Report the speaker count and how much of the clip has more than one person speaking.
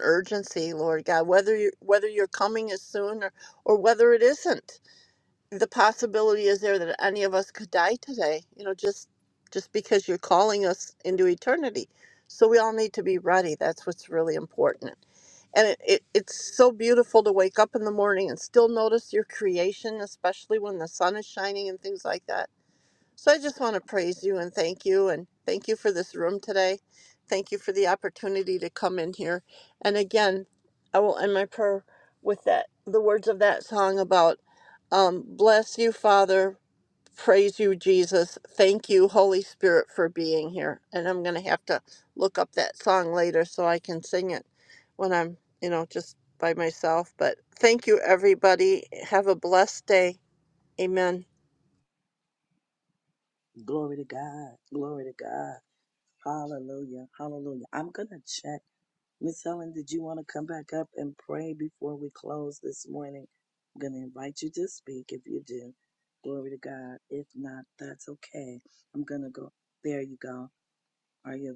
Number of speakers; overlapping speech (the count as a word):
two, no overlap